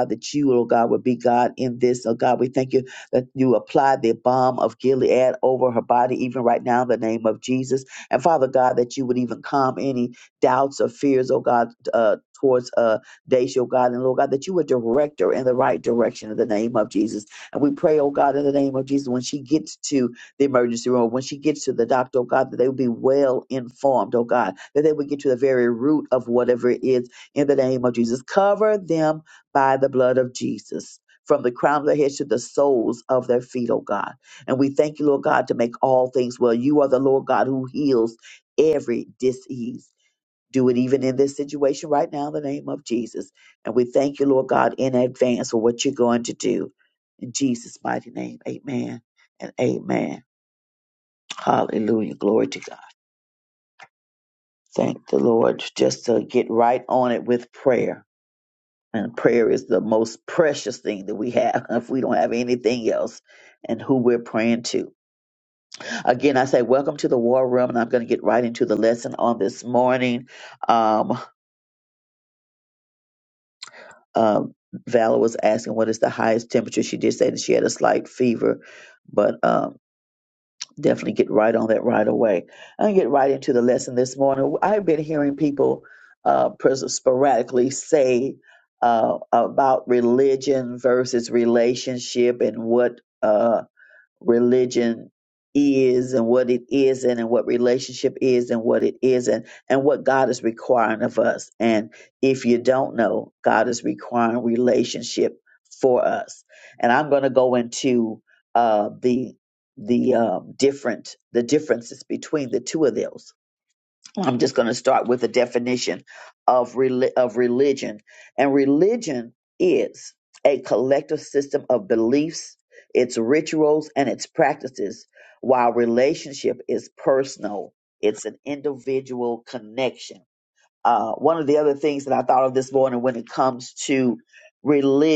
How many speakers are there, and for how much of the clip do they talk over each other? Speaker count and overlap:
one, no overlap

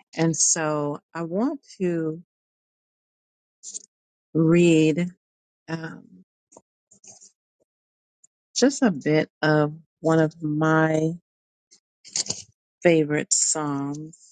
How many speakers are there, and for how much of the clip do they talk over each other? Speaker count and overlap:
one, no overlap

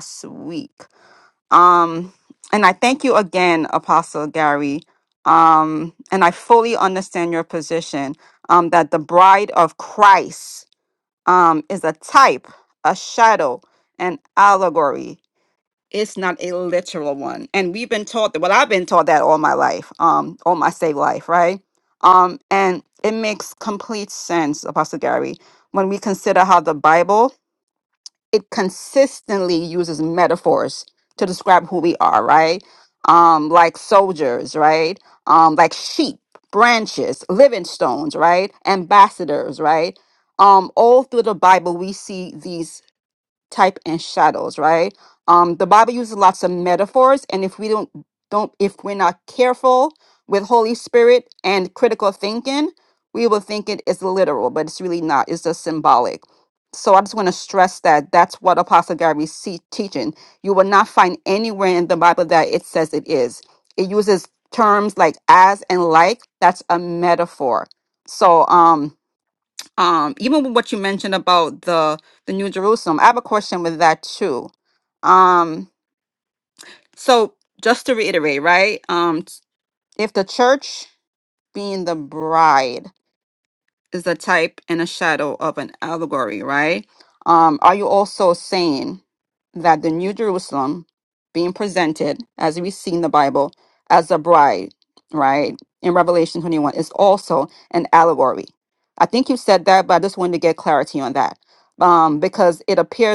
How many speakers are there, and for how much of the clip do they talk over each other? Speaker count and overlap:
one, no overlap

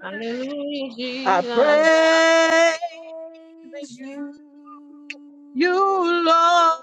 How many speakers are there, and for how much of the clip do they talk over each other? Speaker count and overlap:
three, about 9%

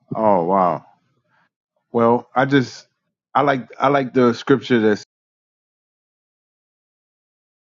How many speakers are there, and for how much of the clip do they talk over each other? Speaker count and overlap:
one, no overlap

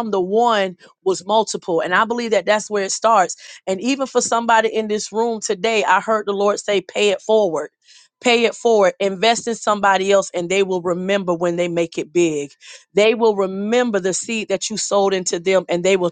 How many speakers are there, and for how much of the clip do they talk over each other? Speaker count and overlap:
one, no overlap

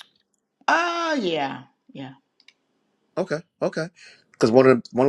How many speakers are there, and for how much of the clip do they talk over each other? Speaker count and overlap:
two, no overlap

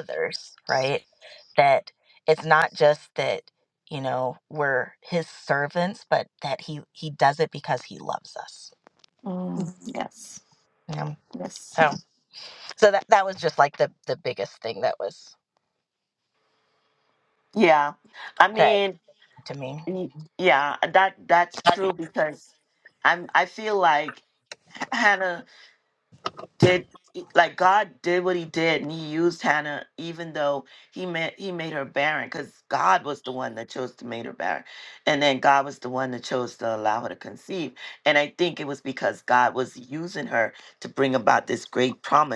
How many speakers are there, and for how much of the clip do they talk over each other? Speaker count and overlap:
two, about 1%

